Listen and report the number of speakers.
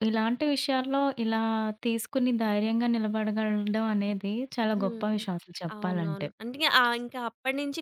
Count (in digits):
2